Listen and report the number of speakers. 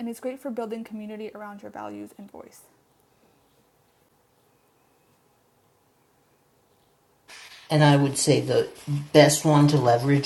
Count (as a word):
two